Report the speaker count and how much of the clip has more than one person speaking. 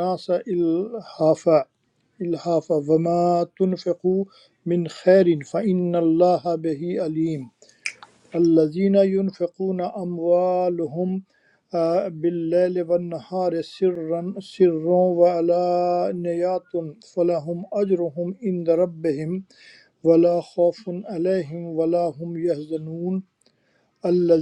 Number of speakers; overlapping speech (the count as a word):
one, no overlap